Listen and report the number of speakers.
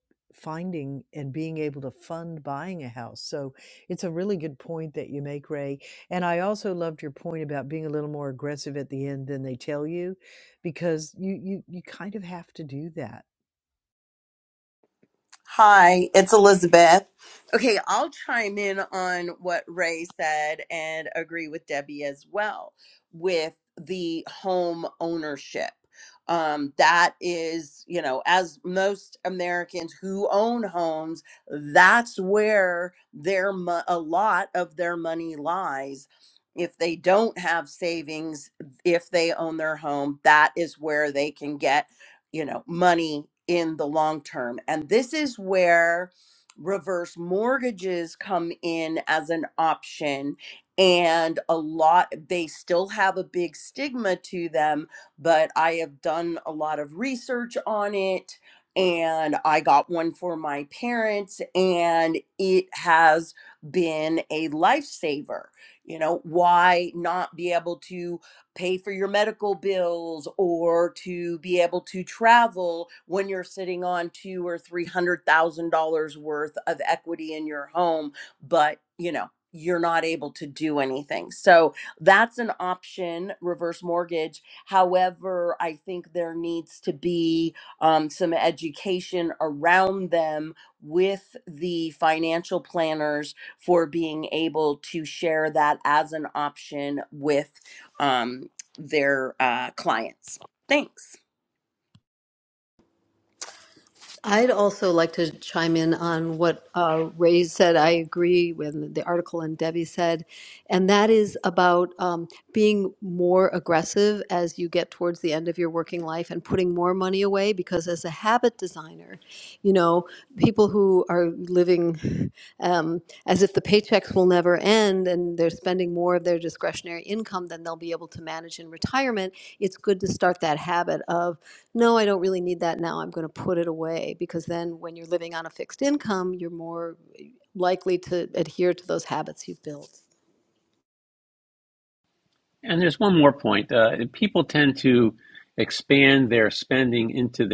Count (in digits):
4